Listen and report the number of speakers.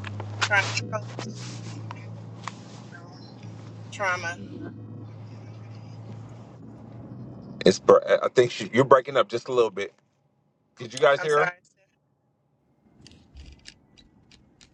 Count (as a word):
two